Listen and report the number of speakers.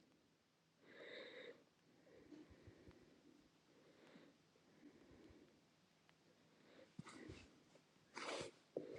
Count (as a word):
zero